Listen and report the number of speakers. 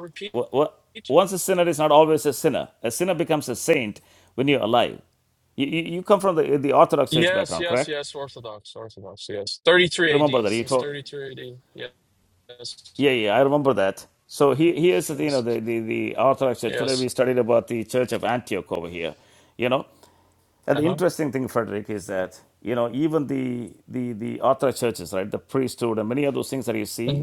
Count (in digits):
2